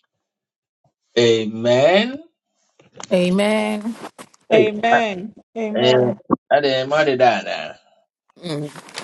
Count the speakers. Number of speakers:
three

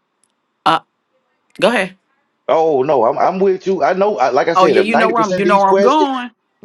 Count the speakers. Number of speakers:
two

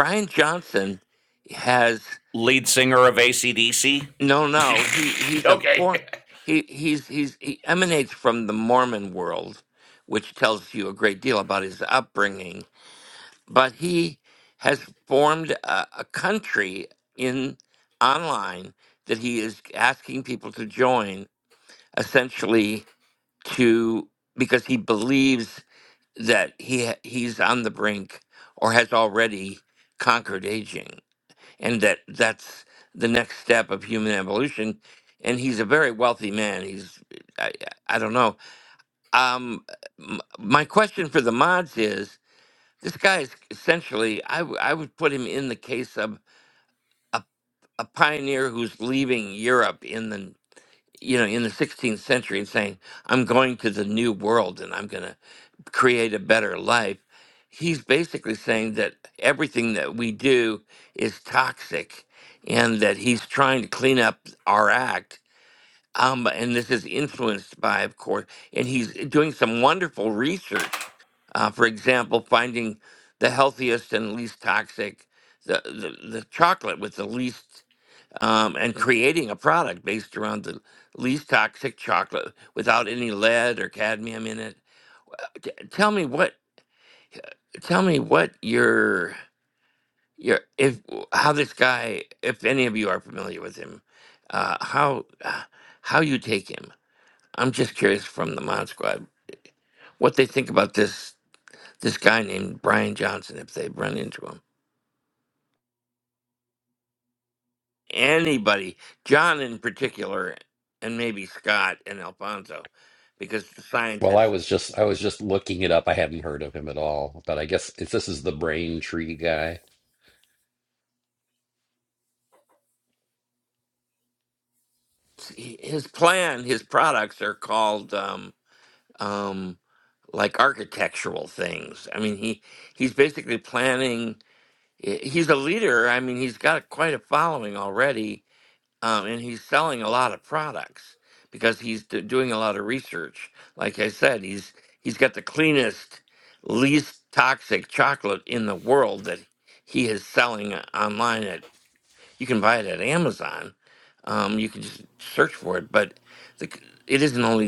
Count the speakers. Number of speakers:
three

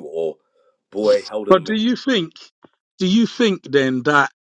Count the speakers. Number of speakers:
two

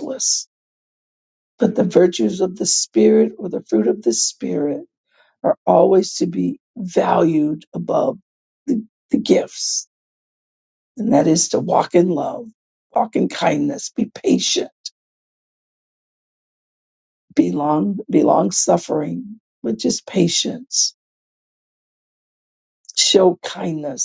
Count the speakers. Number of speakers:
one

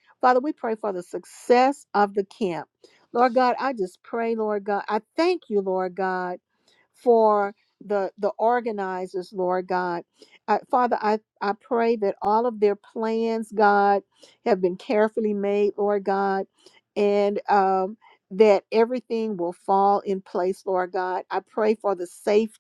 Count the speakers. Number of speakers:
one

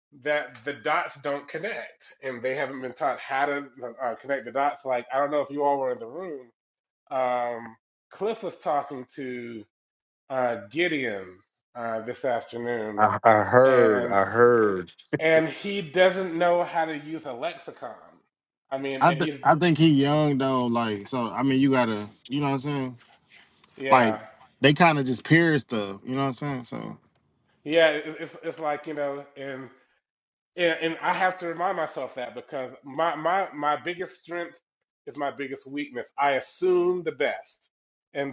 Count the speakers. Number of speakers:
three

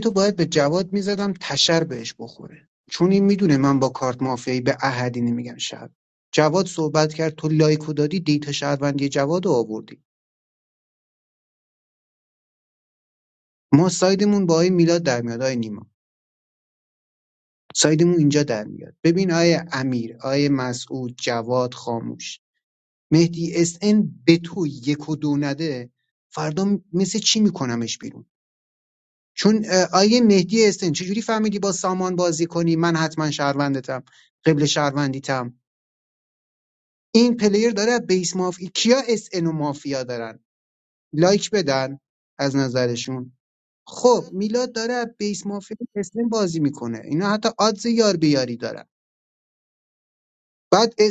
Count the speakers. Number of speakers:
one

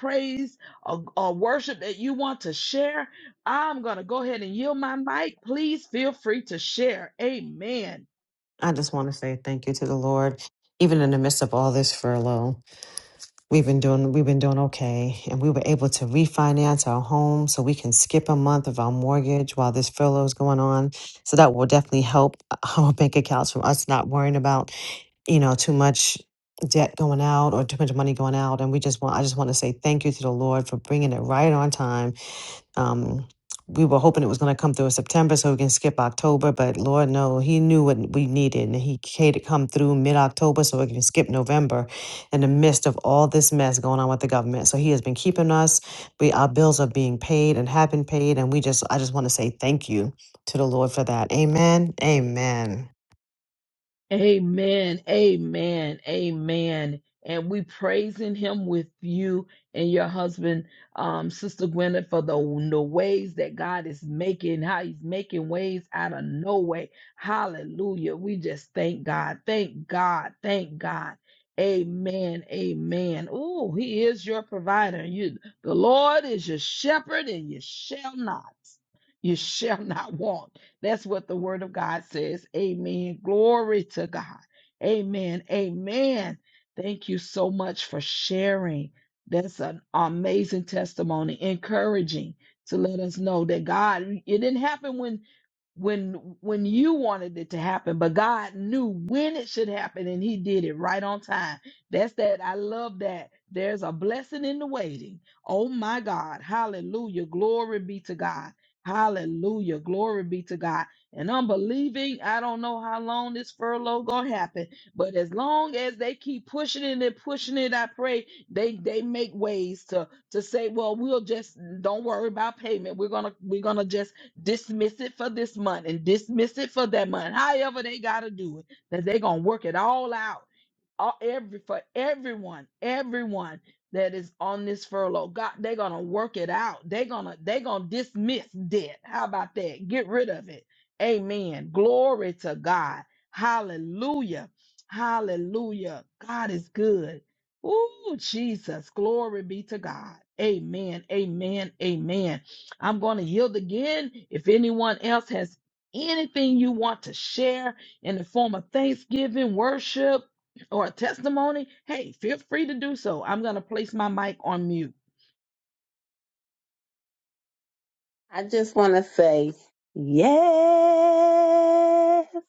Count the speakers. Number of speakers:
three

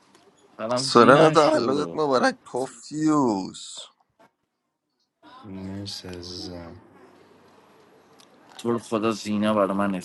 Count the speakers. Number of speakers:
three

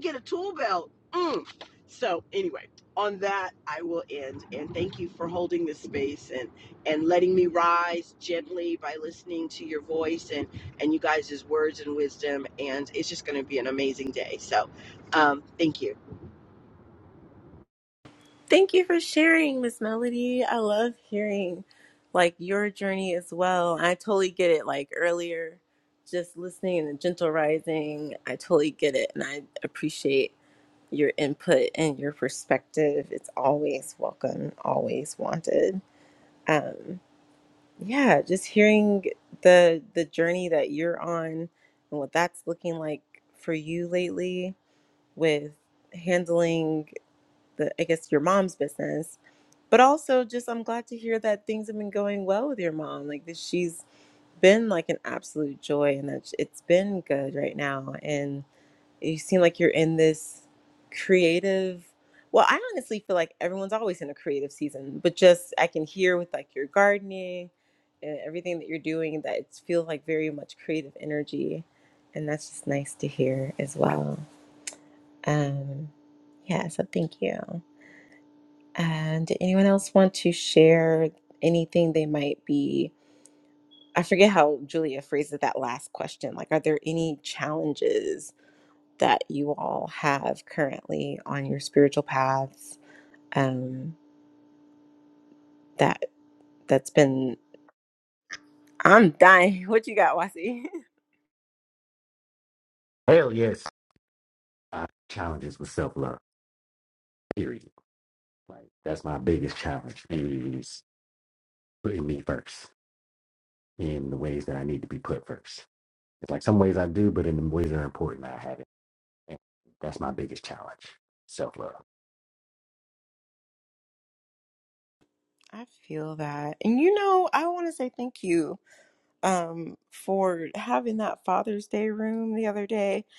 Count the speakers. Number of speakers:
three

